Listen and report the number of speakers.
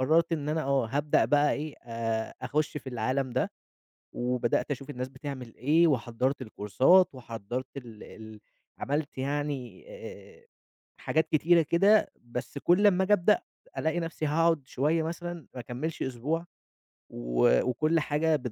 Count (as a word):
one